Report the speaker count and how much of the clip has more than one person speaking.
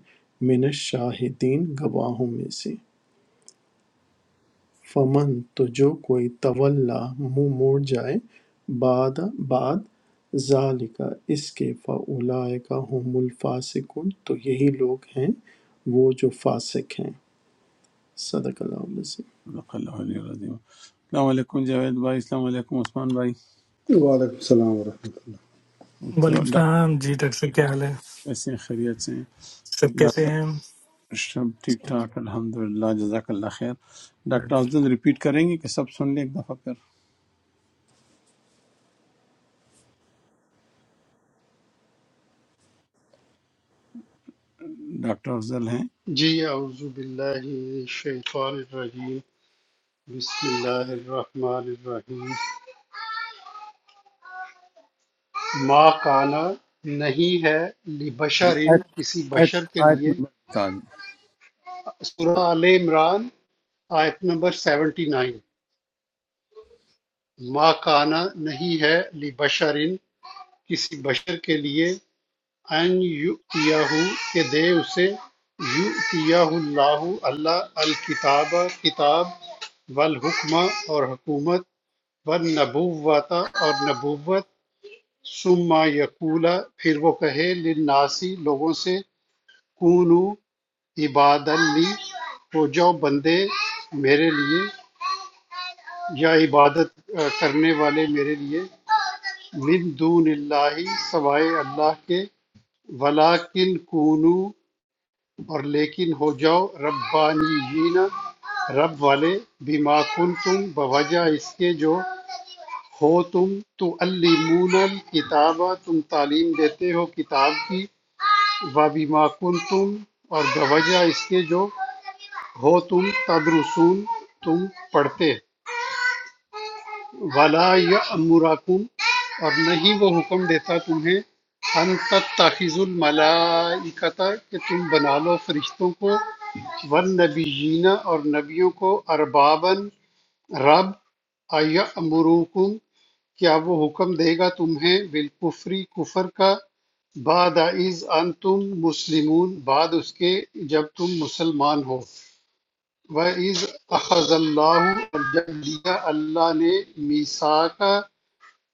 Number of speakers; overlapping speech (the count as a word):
five, about 1%